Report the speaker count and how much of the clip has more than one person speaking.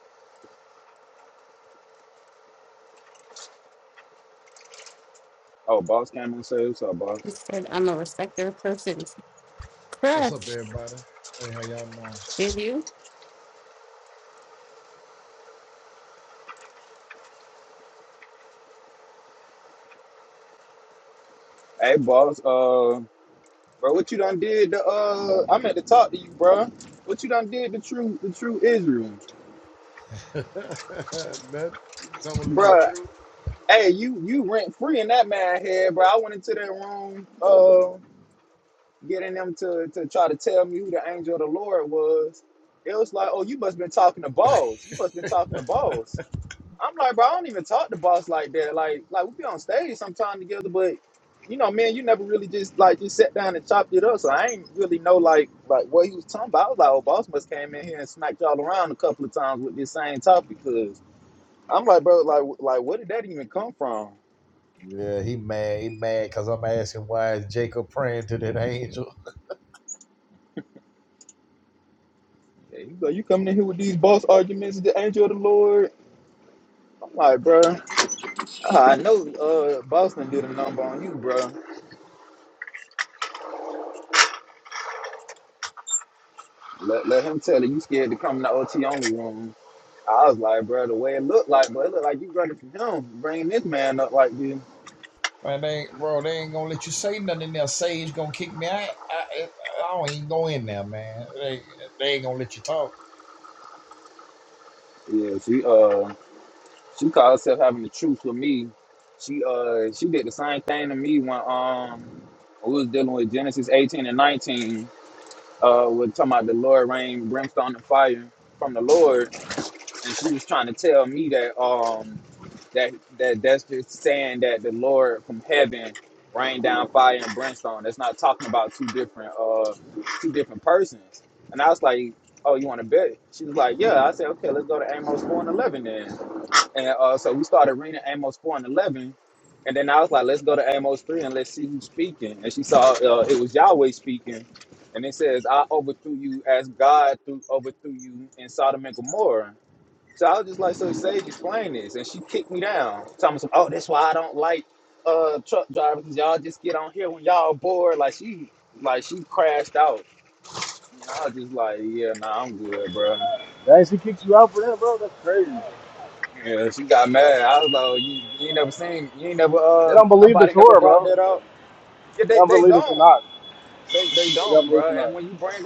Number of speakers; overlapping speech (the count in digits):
4, about 2%